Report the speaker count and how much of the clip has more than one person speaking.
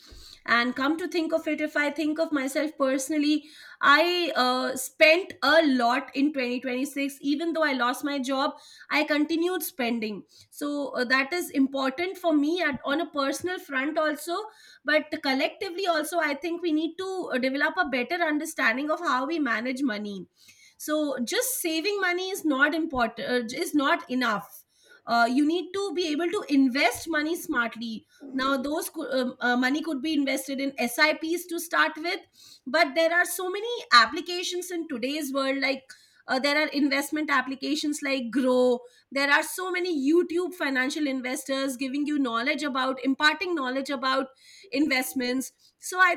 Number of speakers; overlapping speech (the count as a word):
one, no overlap